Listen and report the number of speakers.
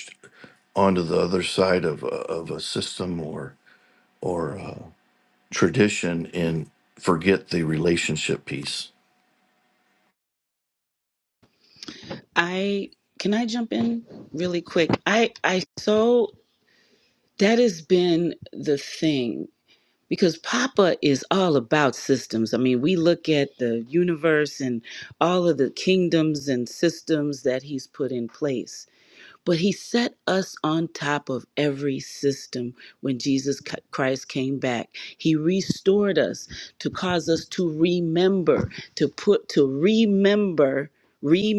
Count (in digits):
2